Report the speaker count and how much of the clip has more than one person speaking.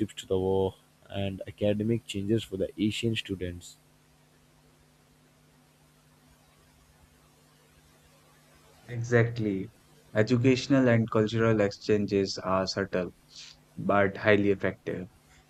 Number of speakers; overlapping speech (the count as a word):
two, no overlap